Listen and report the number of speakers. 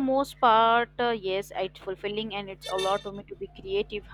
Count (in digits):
1